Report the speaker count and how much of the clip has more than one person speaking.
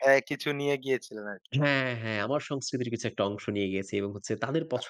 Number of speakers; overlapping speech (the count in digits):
2, about 3%